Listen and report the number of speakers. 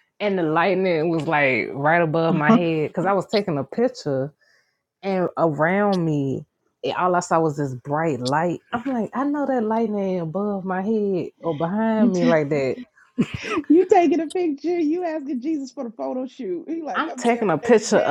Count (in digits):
2